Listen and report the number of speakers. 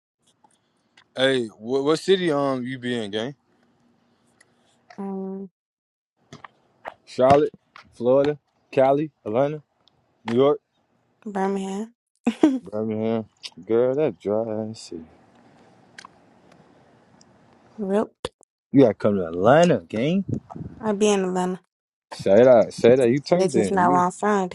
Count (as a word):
two